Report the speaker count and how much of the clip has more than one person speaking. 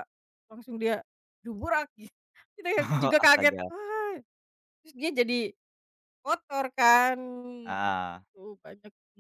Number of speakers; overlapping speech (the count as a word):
two, about 10%